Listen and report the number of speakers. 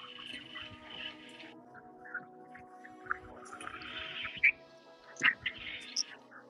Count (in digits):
0